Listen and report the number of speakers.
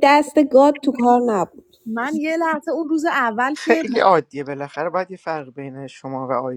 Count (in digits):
3